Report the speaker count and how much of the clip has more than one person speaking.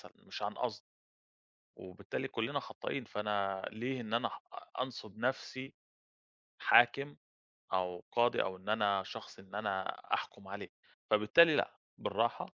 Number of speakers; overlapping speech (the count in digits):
1, no overlap